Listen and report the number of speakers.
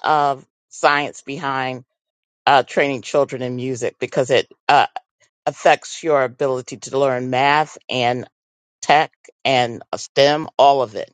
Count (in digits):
1